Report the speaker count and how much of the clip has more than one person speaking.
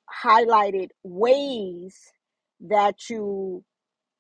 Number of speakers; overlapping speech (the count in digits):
1, no overlap